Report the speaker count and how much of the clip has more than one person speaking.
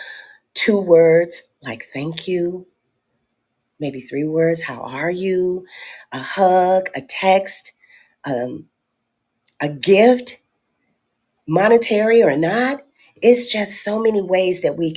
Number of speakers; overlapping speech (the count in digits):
1, no overlap